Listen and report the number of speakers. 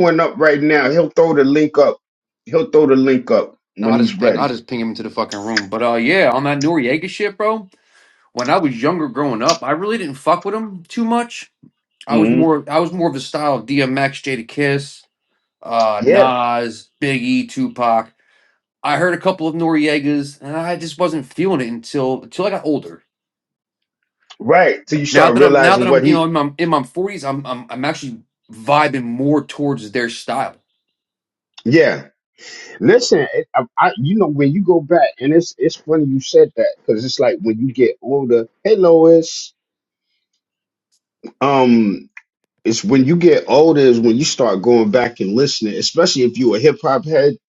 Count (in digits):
2